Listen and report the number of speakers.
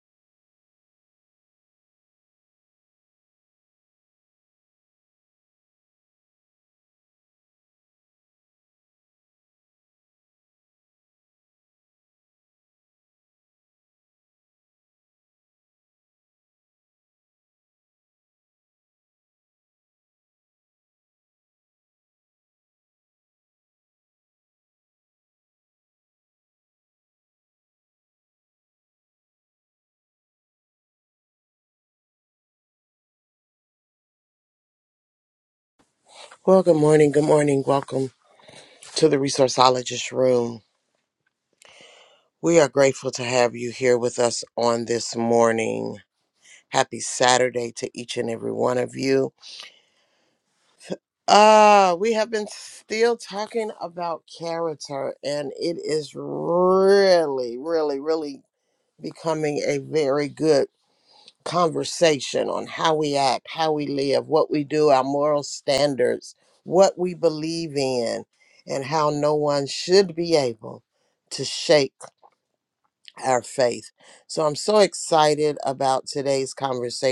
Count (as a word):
one